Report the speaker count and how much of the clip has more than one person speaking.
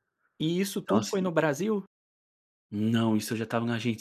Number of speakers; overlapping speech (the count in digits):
2, about 10%